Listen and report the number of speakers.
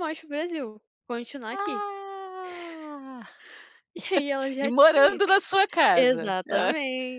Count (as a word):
two